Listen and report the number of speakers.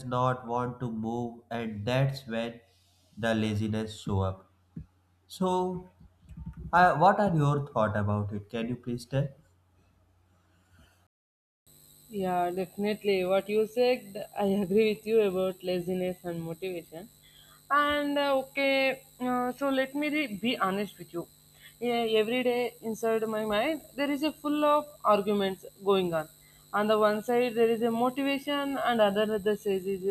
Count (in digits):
2